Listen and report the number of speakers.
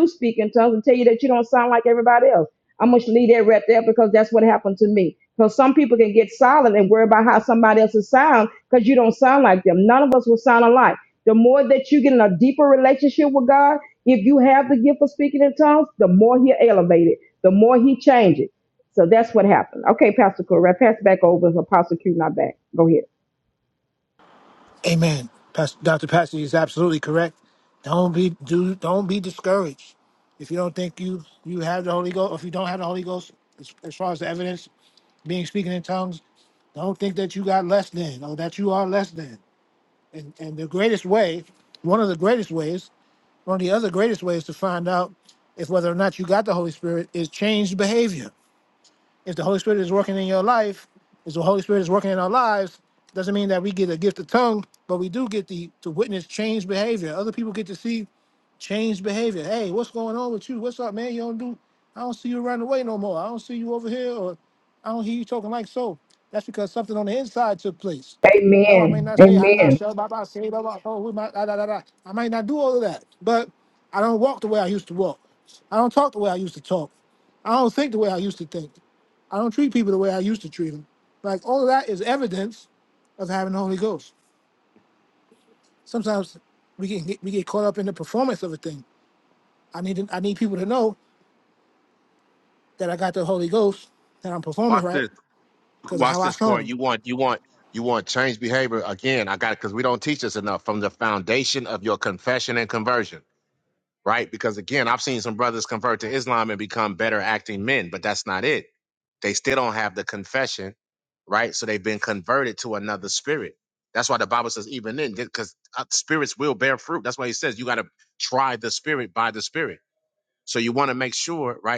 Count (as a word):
three